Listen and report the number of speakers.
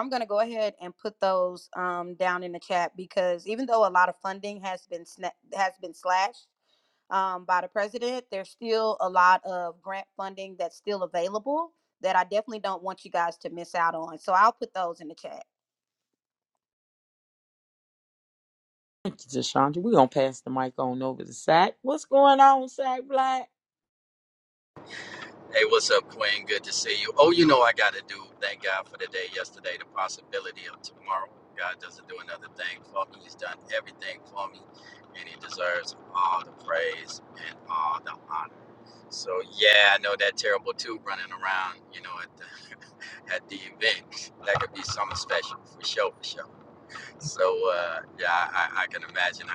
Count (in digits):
3